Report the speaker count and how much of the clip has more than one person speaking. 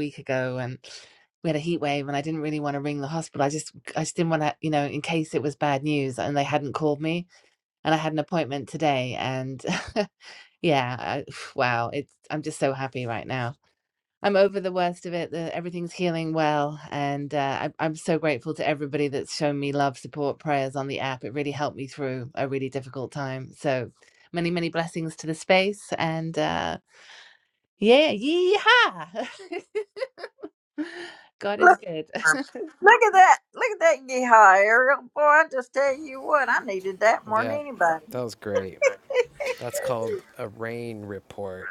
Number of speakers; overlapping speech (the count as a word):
three, about 1%